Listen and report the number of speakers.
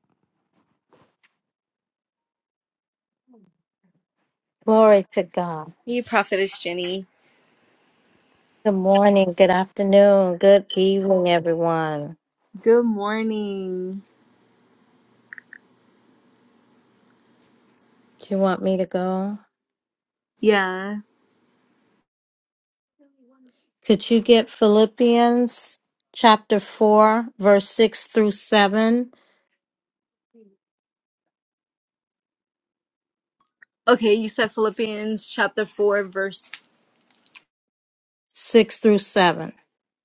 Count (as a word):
two